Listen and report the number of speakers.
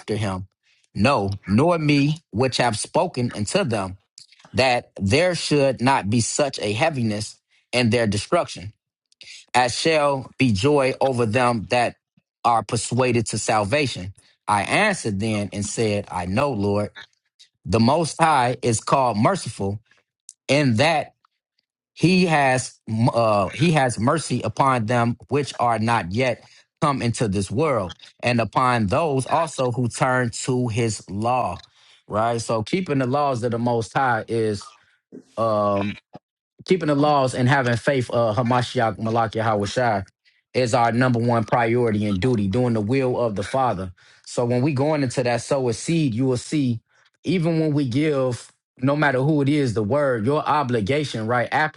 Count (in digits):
1